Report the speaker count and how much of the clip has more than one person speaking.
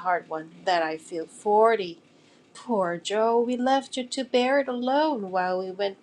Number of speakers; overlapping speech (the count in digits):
1, no overlap